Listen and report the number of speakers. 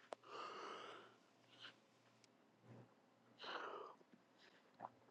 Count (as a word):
zero